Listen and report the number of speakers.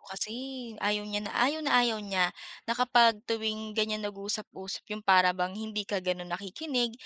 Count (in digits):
1